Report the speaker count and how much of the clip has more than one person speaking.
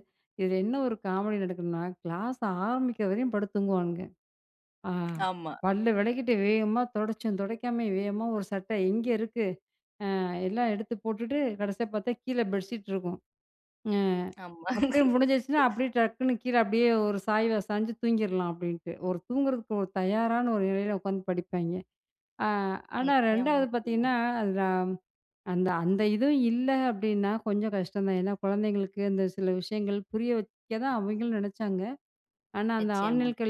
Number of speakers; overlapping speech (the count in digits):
2, about 5%